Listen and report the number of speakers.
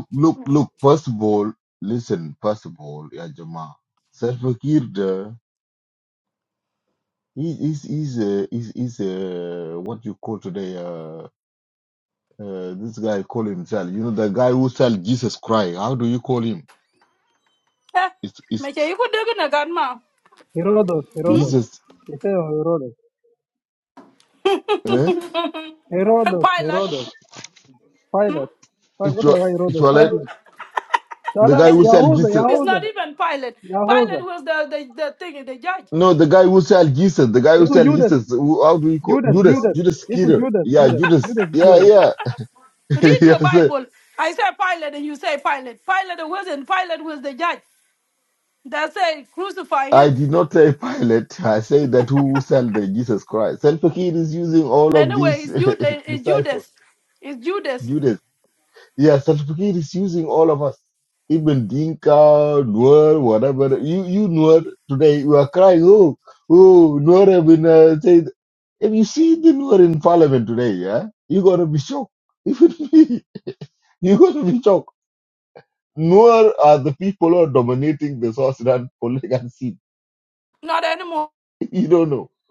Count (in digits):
3